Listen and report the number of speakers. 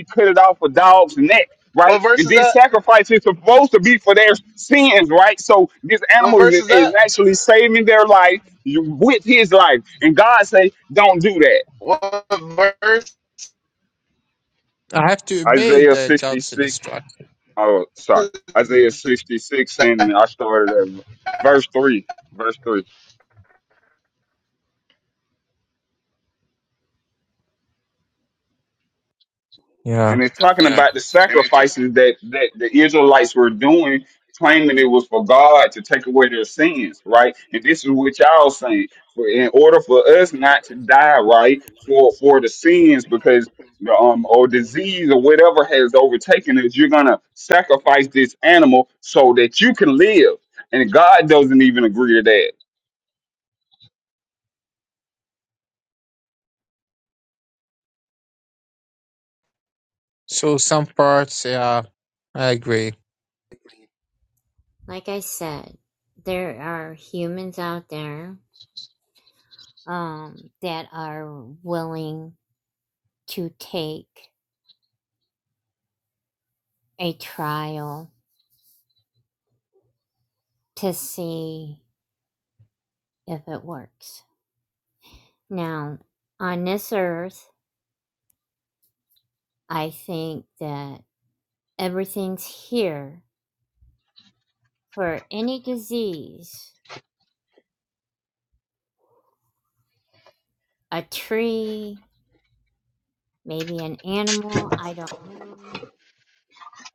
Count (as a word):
four